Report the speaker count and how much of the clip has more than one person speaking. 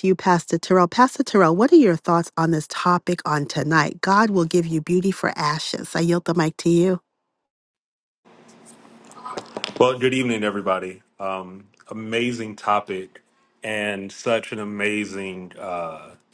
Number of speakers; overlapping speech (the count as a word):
two, no overlap